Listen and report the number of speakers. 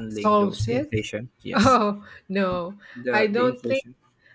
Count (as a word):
two